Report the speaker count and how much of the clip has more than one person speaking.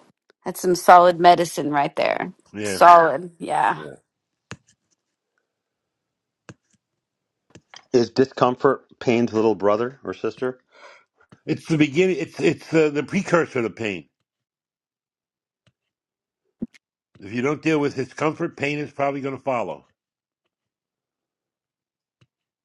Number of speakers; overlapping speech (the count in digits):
3, about 1%